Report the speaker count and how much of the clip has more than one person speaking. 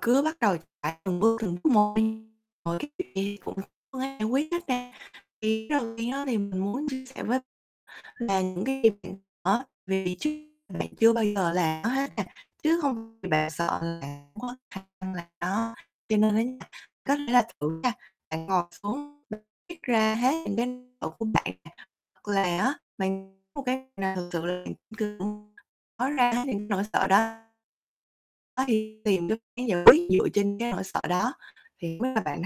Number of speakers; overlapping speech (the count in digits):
1, no overlap